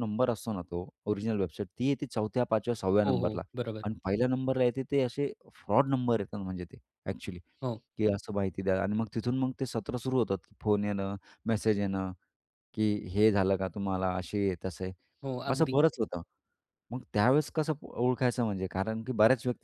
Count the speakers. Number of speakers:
two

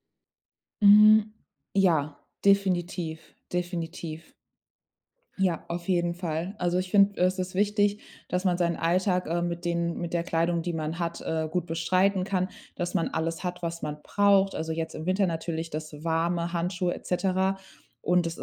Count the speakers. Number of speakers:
one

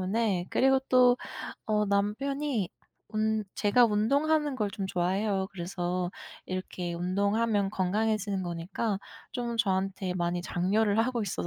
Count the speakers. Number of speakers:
one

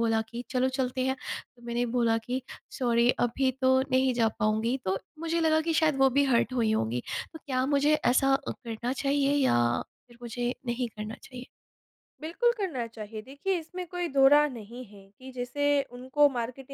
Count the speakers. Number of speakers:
two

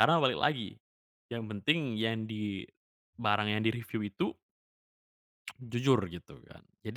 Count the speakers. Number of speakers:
one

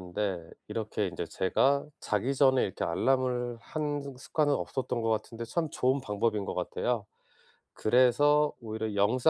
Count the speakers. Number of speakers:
one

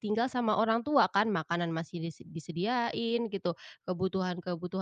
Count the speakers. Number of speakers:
one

